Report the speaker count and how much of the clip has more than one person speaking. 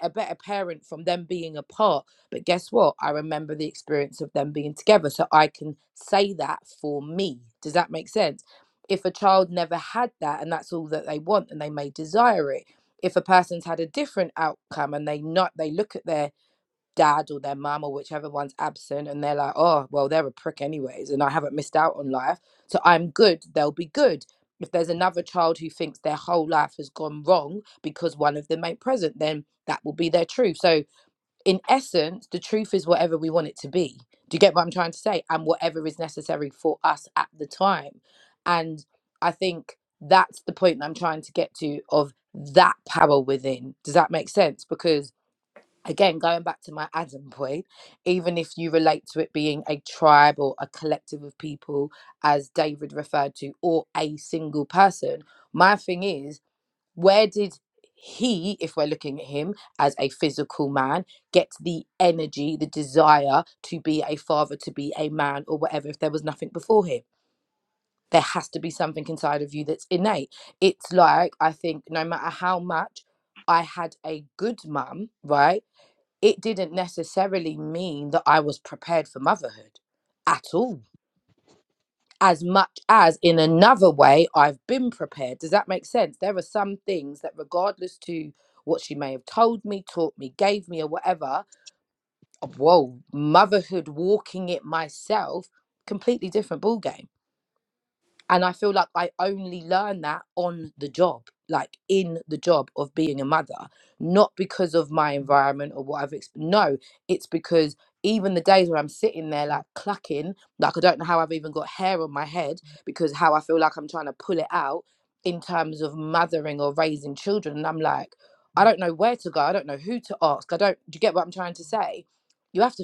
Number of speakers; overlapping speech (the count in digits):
1, no overlap